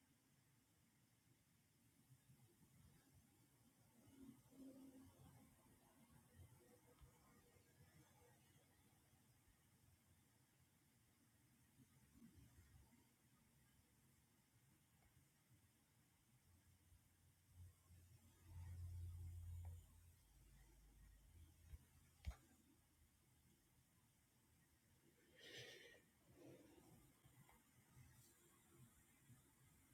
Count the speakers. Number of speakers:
zero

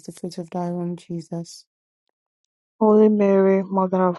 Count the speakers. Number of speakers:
two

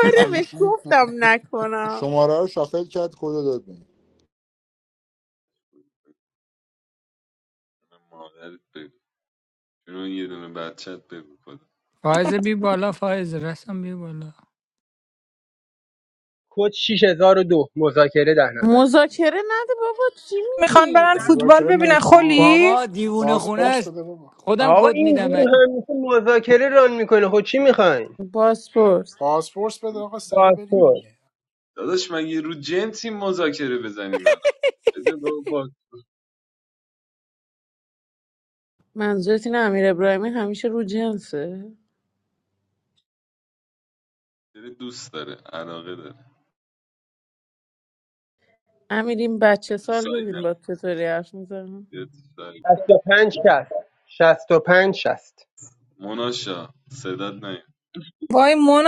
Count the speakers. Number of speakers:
seven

